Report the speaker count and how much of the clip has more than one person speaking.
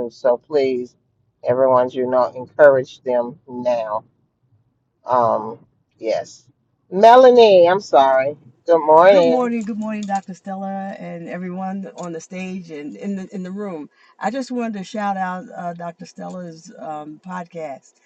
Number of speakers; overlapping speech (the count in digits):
2, about 2%